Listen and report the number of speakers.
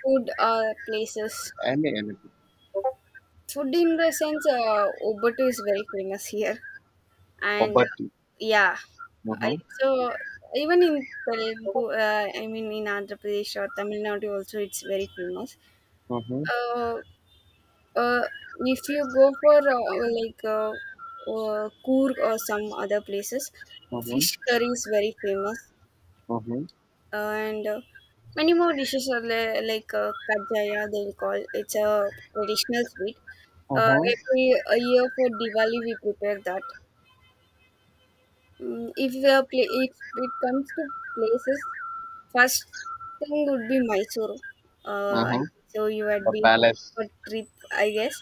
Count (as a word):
two